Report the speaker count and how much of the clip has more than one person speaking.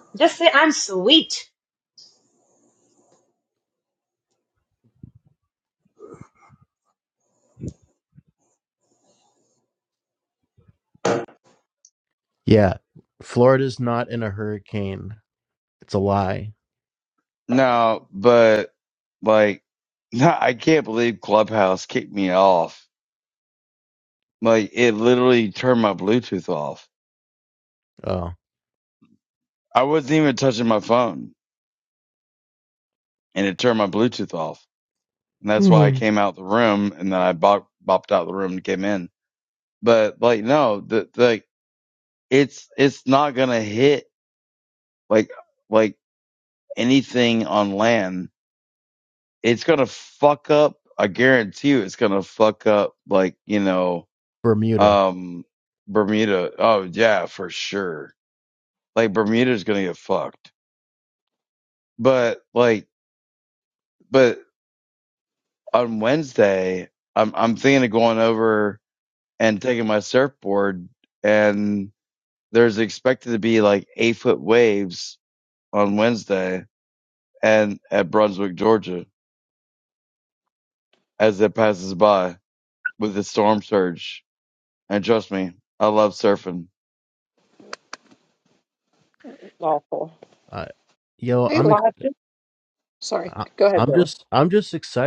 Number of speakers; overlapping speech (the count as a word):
four, about 2%